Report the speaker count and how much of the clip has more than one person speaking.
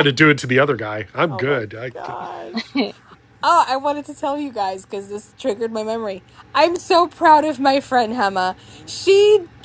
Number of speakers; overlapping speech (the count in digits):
2, about 3%